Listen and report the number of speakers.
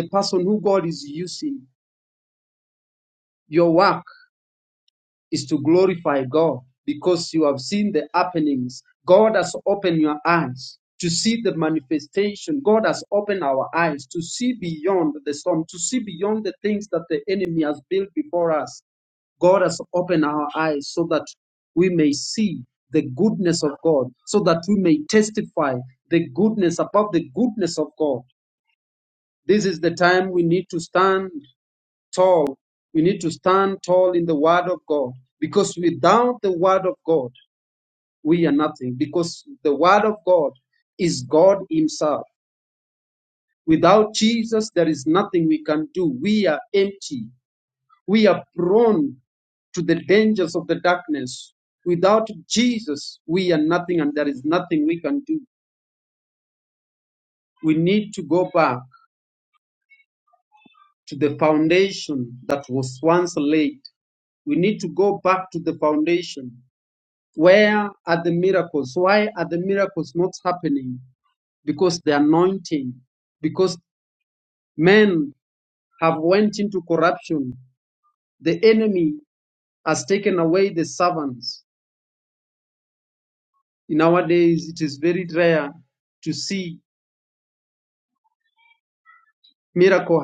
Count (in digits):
1